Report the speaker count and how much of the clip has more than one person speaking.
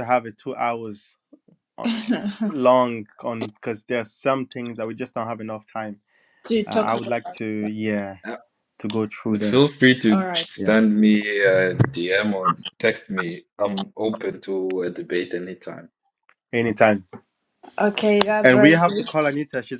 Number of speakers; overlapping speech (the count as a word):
three, about 11%